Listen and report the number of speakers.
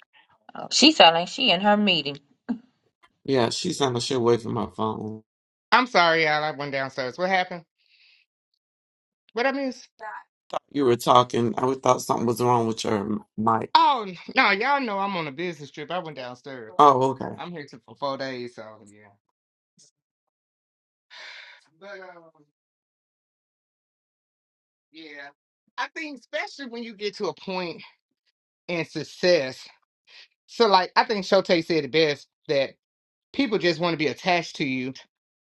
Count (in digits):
3